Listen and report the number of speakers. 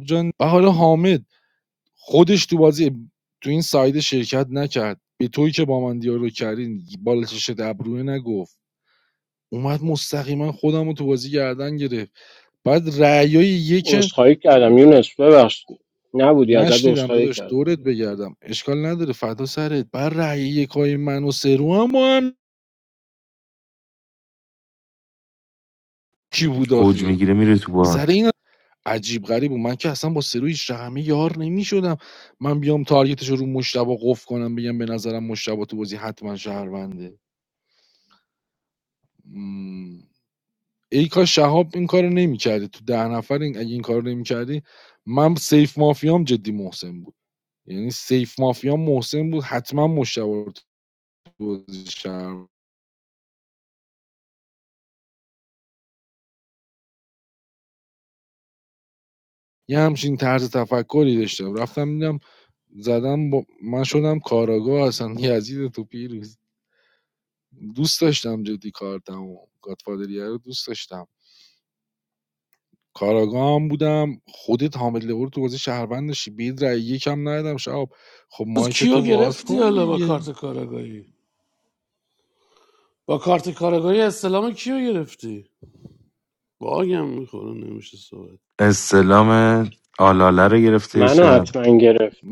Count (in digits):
4